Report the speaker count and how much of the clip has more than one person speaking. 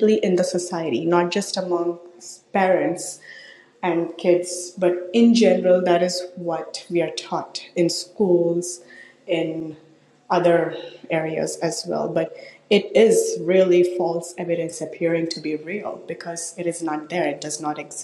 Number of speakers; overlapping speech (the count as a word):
one, no overlap